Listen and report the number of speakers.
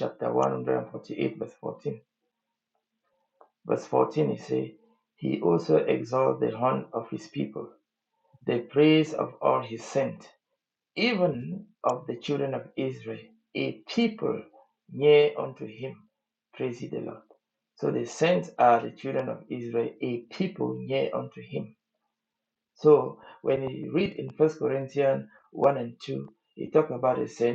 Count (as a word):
one